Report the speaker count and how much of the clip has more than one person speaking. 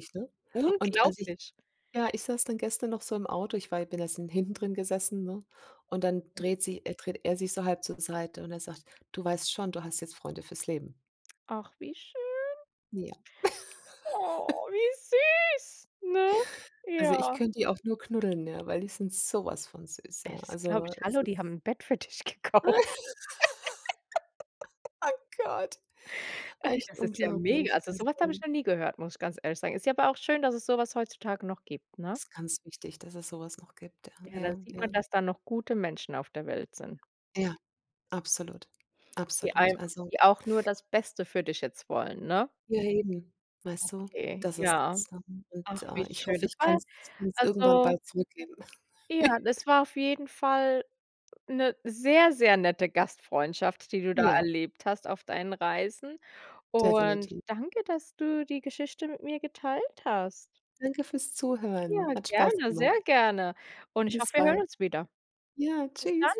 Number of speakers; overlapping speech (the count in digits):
2, about 14%